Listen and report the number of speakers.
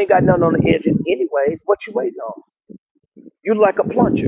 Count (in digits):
1